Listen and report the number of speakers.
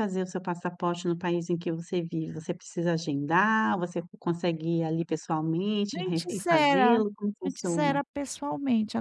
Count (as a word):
two